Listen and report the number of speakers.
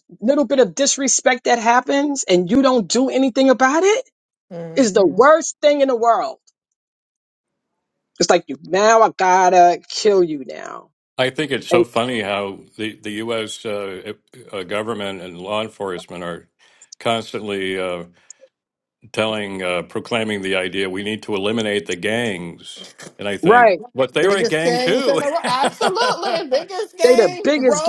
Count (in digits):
3